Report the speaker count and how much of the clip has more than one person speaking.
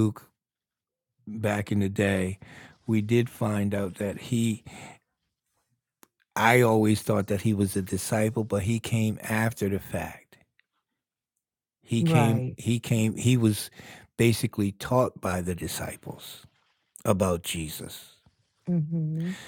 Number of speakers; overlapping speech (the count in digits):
2, about 3%